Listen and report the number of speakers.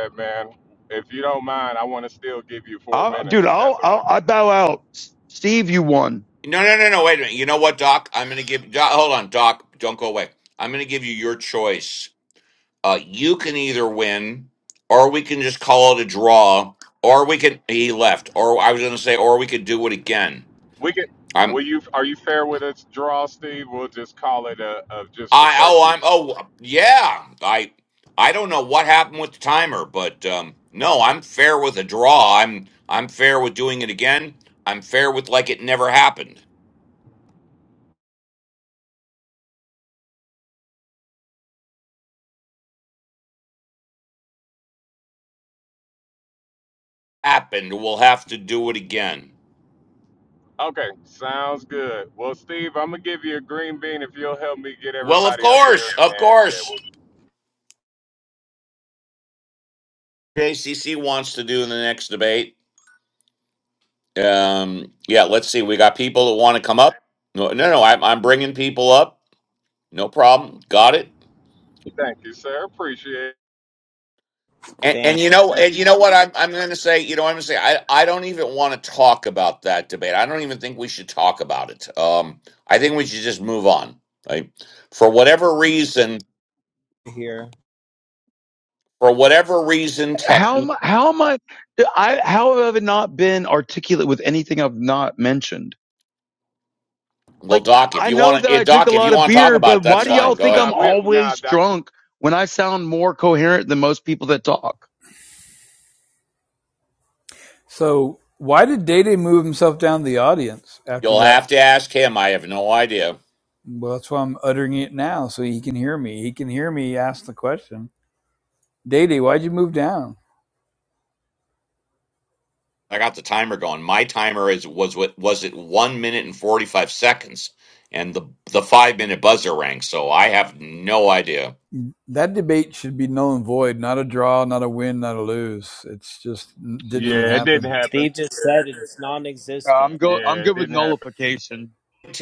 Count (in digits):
5